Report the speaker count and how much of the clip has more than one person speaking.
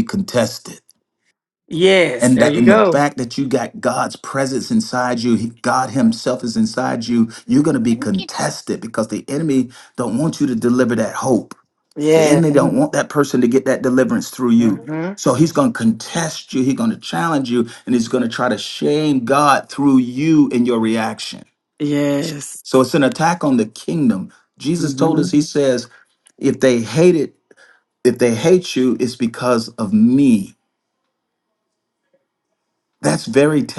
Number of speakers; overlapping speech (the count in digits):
2, about 6%